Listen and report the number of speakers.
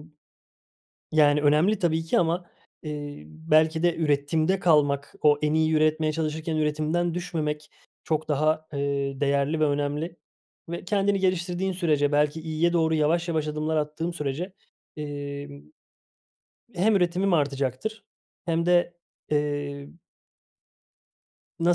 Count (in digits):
1